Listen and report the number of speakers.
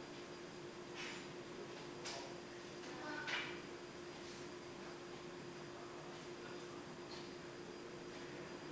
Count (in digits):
0